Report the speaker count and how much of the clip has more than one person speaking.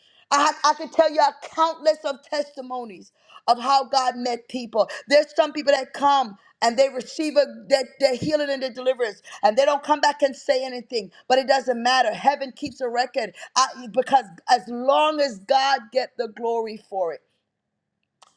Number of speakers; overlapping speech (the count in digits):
1, no overlap